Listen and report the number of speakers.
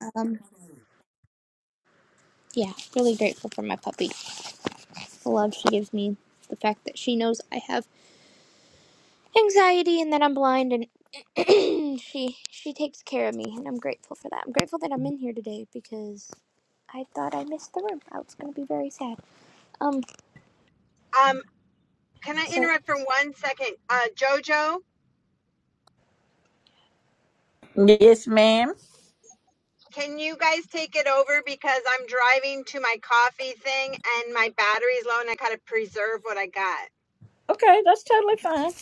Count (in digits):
3